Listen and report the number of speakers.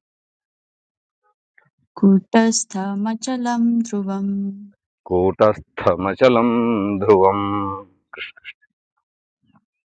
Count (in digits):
2